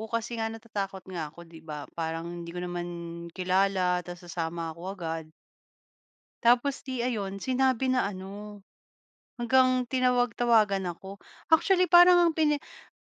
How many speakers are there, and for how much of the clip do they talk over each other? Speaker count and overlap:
1, no overlap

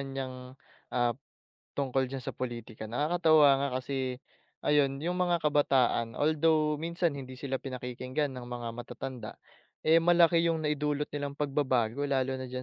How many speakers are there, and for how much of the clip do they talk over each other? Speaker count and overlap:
1, no overlap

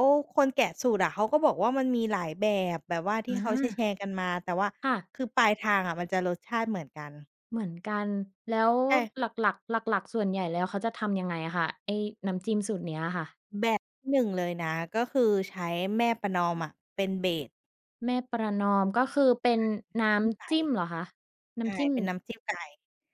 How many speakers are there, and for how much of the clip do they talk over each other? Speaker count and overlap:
2, about 5%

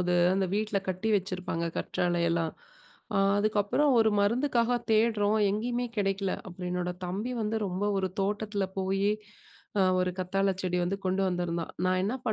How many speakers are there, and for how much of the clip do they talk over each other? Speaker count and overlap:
1, no overlap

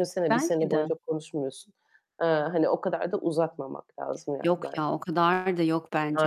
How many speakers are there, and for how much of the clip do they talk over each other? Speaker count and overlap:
2, about 18%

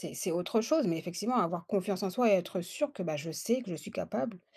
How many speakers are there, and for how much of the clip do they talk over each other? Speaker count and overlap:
1, no overlap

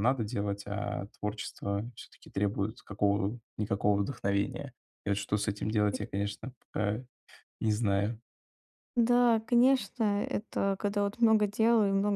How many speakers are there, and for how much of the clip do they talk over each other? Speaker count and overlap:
2, under 1%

